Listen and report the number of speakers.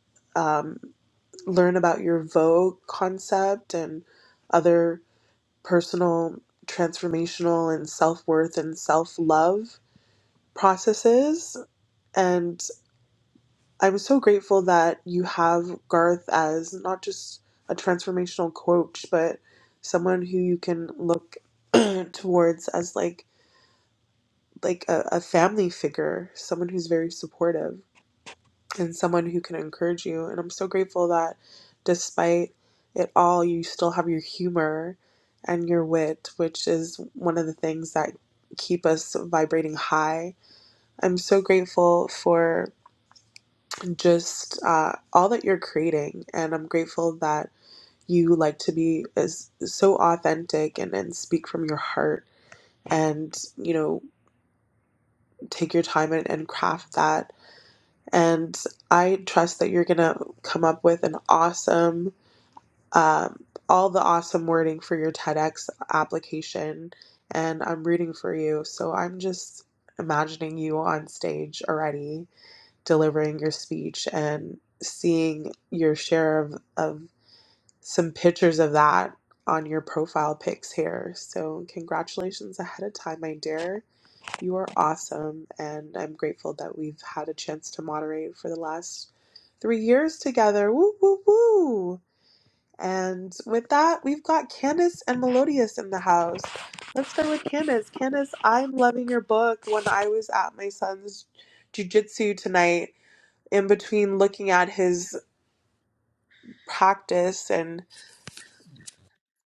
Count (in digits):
1